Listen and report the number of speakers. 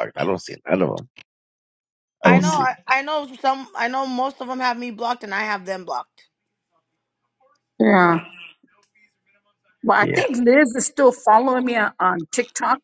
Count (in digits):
3